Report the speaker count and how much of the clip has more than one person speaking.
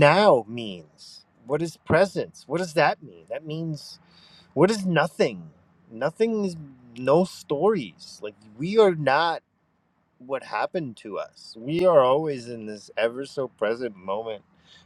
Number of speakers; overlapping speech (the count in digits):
1, no overlap